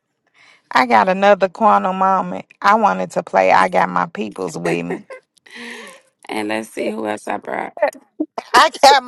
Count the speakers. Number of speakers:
2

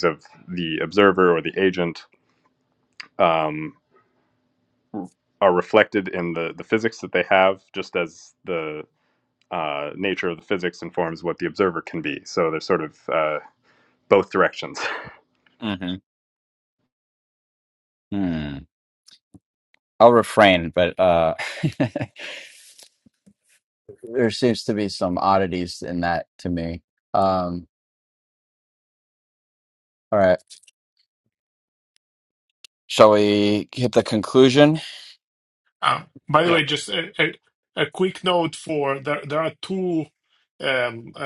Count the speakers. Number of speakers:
3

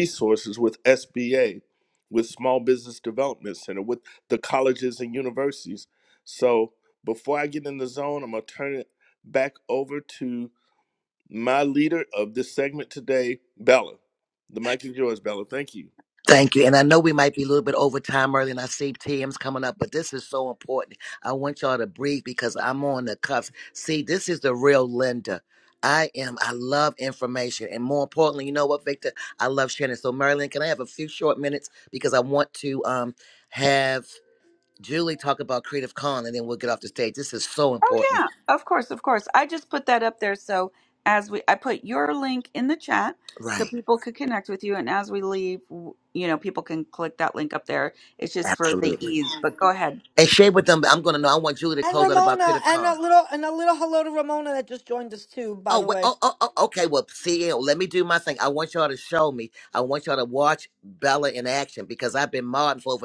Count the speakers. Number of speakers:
4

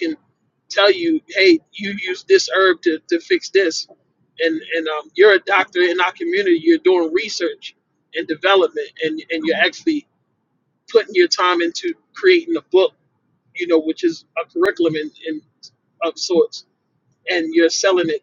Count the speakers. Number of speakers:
1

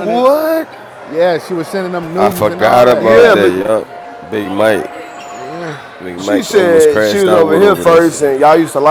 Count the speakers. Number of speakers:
3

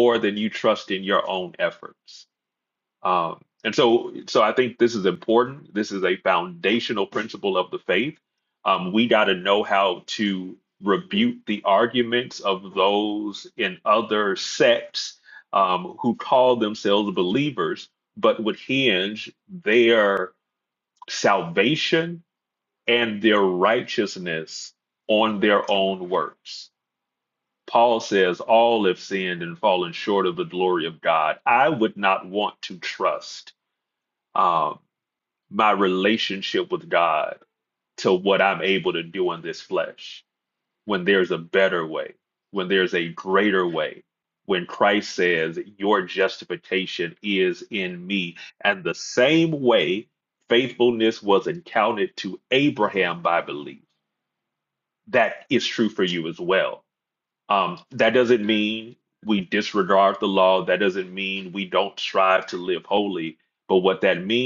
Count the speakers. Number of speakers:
1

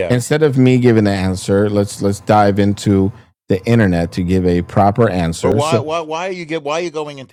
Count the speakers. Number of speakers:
2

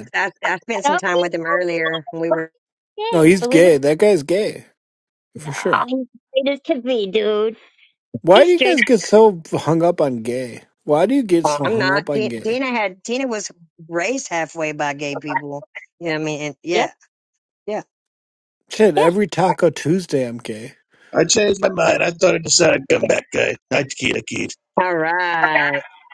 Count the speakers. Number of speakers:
4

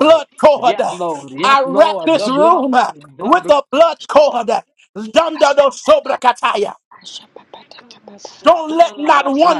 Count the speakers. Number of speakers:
3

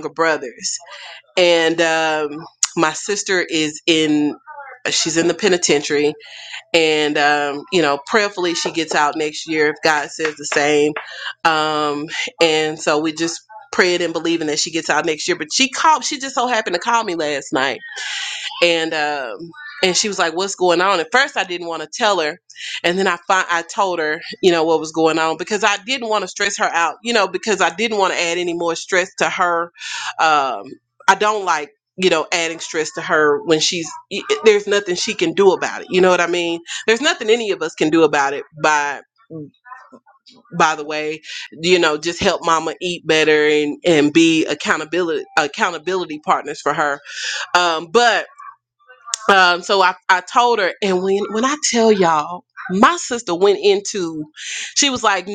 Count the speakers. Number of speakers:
1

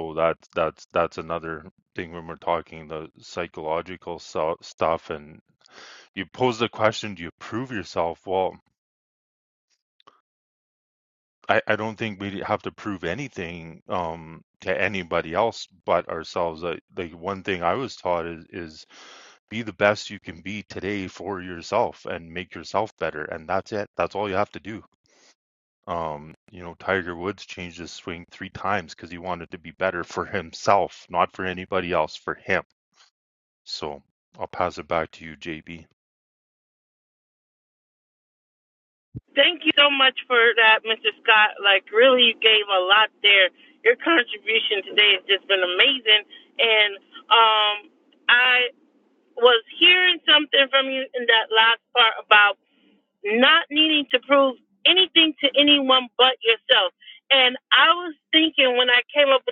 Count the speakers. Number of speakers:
2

